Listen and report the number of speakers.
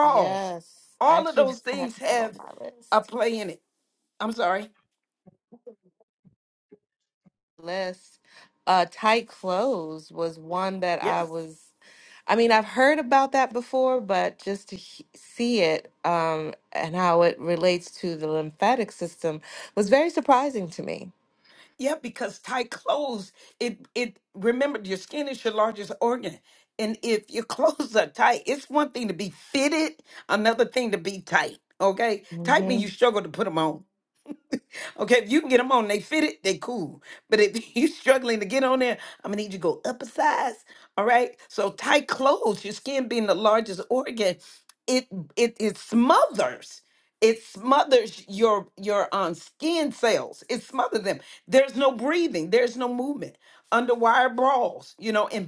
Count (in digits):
2